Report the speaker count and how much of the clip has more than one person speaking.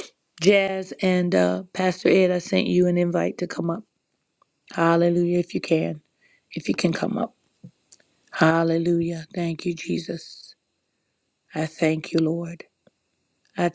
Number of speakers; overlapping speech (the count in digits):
1, no overlap